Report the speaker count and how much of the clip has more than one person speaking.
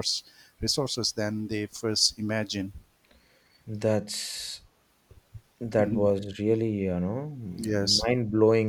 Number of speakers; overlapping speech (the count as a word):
two, about 4%